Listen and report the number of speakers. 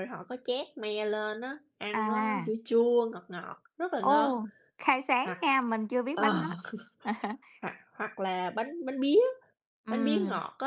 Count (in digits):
2